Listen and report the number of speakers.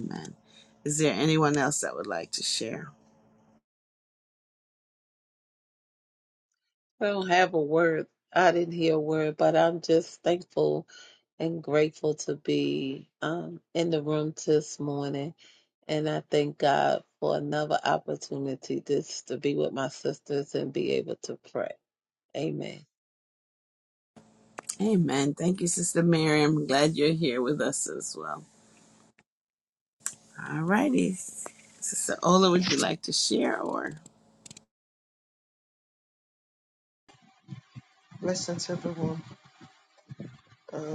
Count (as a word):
three